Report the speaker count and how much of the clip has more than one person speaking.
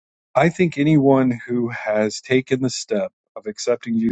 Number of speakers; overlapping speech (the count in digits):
1, no overlap